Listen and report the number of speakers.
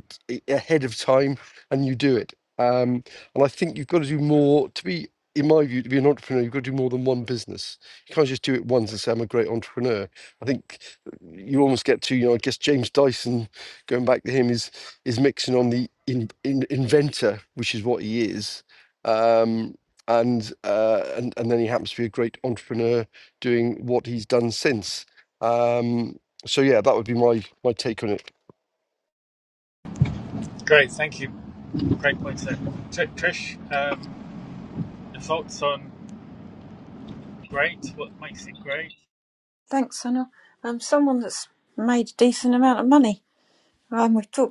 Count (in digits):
3